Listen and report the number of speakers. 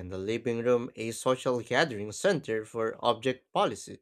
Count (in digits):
1